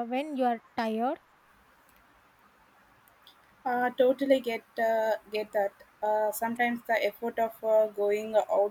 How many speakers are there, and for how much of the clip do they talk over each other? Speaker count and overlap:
2, no overlap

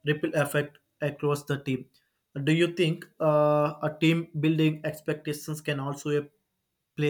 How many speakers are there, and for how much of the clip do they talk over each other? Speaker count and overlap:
1, no overlap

